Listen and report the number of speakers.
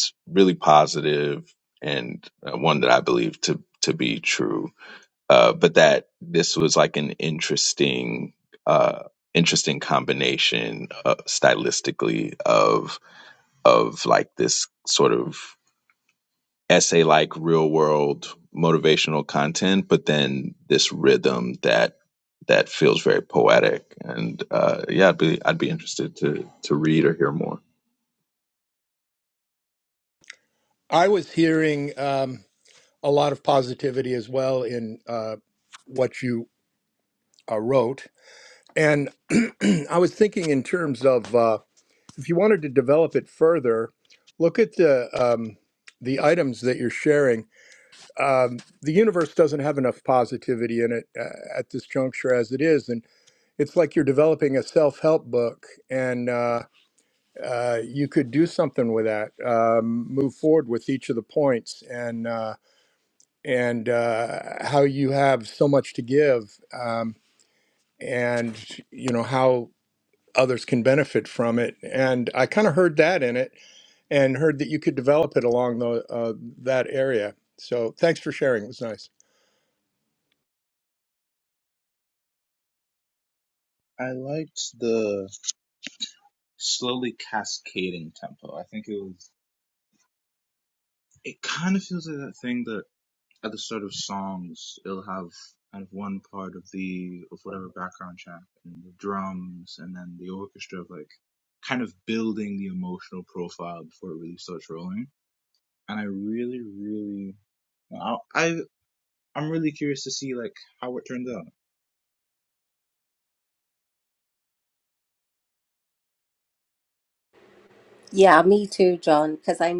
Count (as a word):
four